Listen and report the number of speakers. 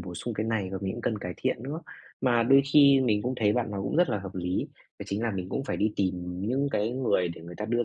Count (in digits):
1